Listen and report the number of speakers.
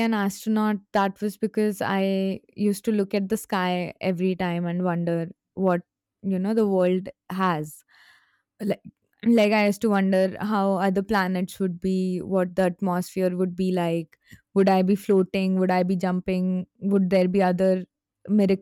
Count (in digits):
1